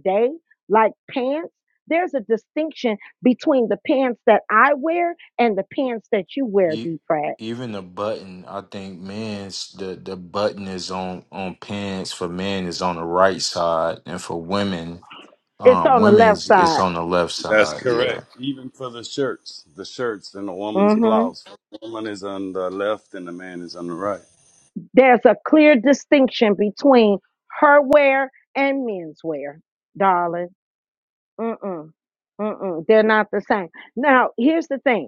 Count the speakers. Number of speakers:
3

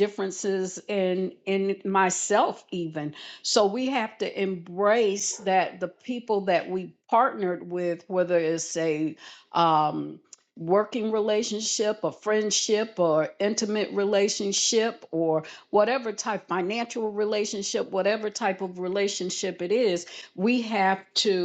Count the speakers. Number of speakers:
1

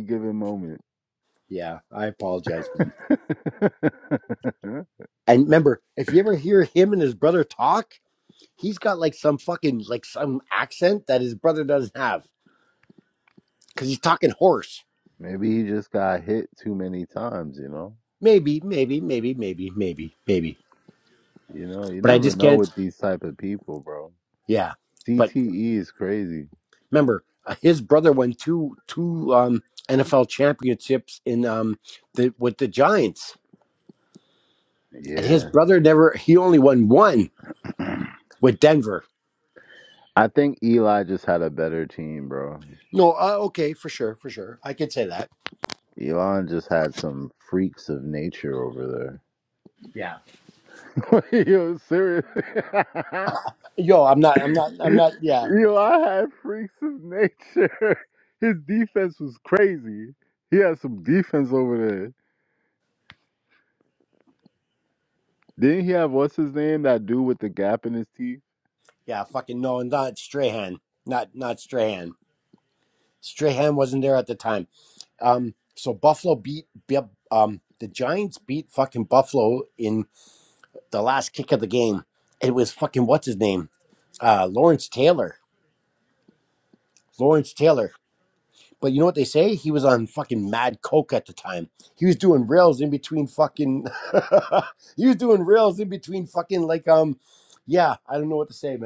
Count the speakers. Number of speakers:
2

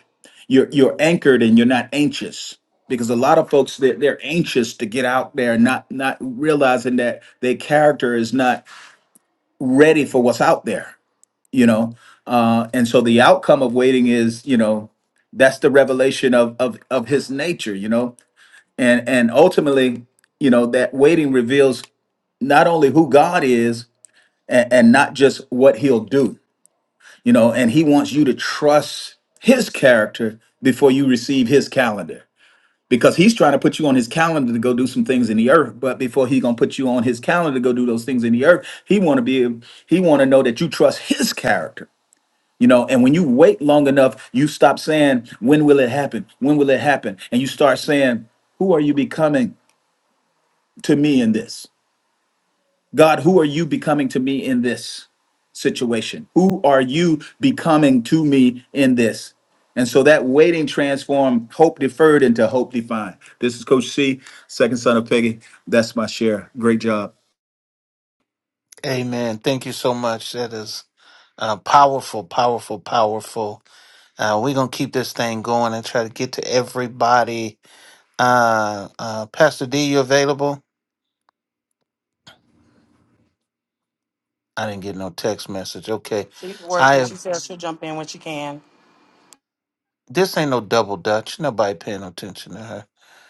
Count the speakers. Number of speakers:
3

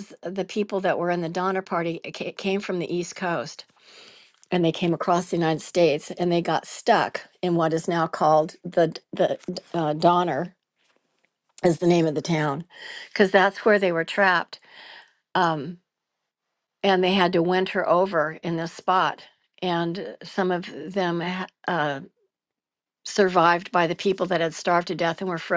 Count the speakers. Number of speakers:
1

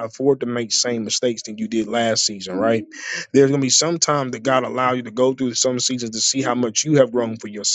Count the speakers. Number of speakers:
1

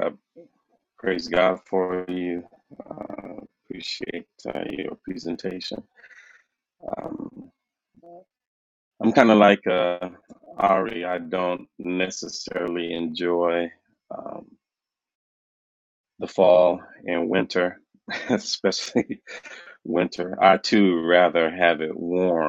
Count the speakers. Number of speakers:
1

